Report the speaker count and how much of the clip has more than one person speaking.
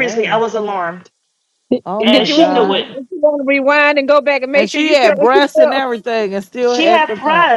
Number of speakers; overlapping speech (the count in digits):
3, about 44%